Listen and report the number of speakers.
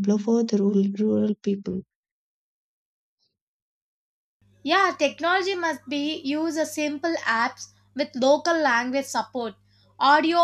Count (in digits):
2